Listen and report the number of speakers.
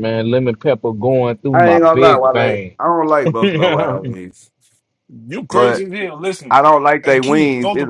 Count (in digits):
3